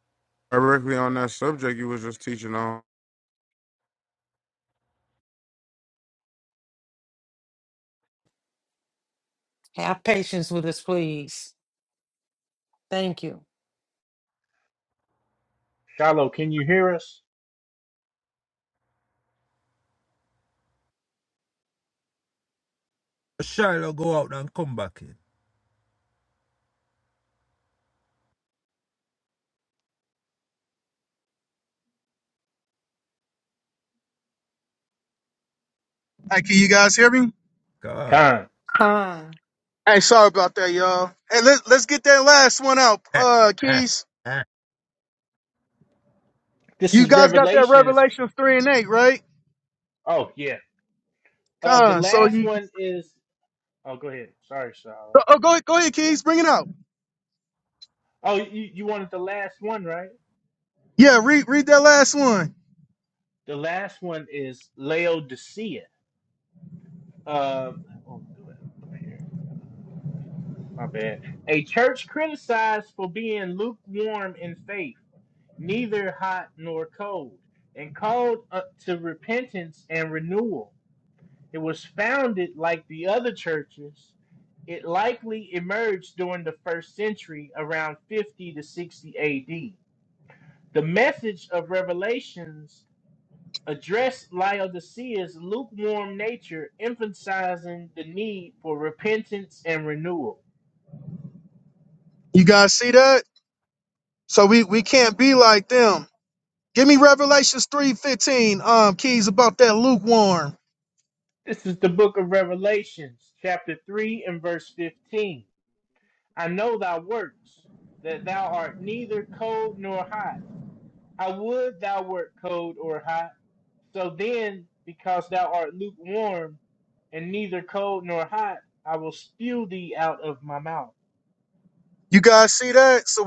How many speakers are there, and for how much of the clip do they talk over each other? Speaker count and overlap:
5, about 2%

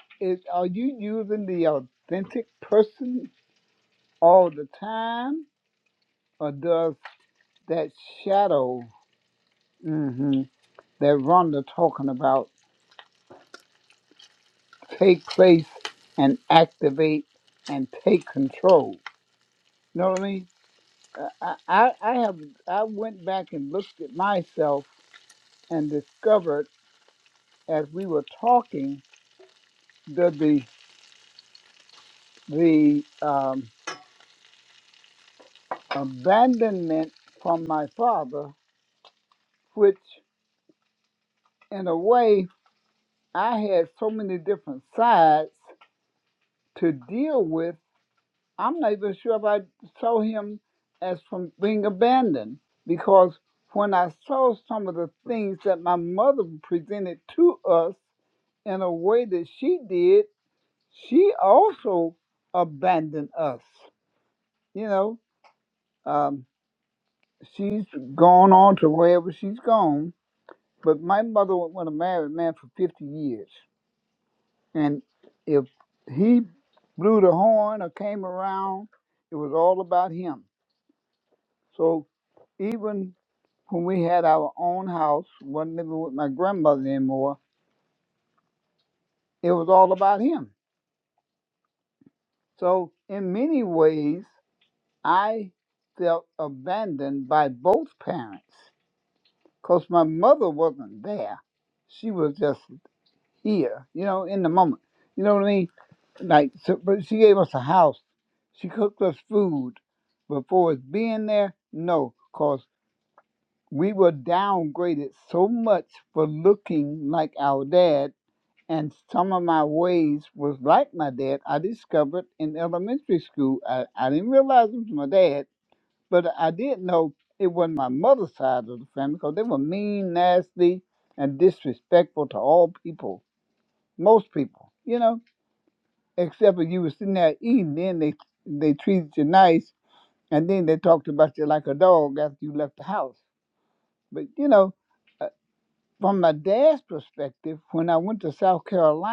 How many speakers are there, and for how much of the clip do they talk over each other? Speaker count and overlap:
1, no overlap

